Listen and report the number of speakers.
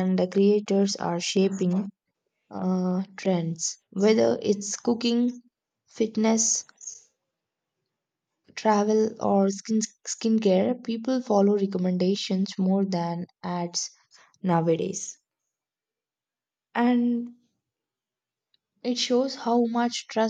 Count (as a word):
one